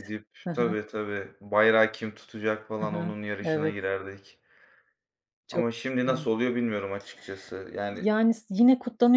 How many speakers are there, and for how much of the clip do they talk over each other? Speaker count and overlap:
two, about 16%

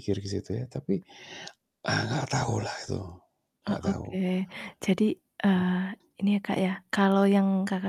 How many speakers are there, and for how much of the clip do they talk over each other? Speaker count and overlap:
two, about 7%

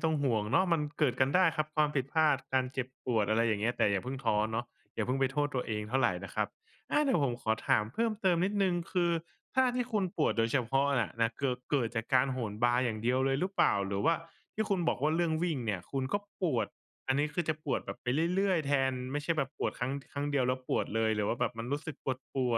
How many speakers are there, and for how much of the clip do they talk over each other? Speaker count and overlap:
one, no overlap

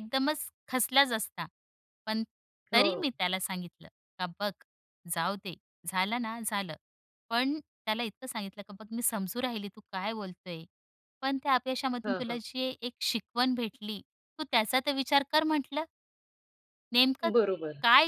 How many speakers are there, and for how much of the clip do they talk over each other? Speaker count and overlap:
two, about 4%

